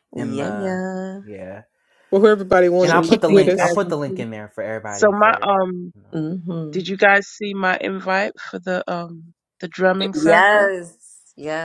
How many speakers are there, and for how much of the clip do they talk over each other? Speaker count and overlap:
4, about 27%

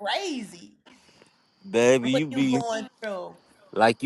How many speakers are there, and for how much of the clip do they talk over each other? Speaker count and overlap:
2, about 14%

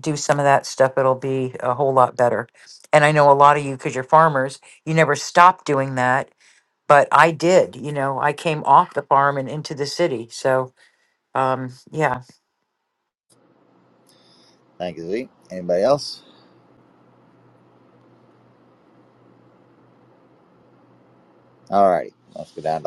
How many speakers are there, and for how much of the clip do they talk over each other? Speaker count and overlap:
2, no overlap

